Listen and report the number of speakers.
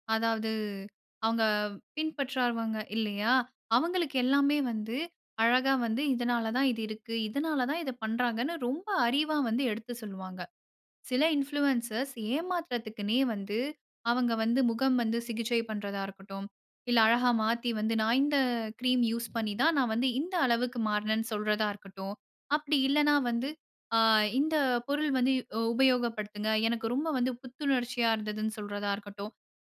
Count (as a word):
one